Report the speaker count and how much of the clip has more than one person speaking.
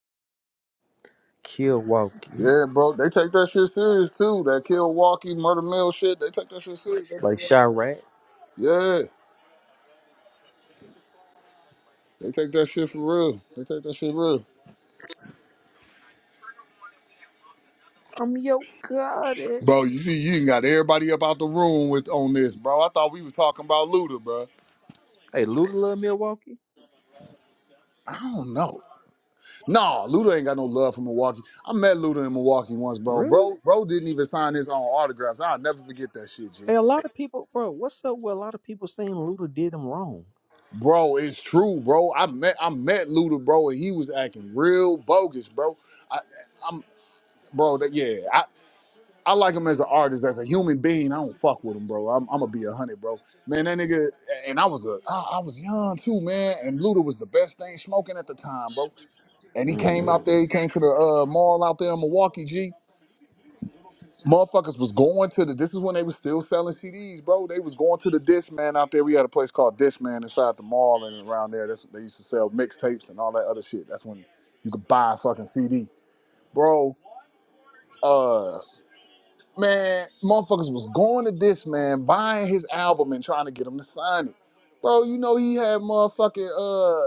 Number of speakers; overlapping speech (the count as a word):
two, about 1%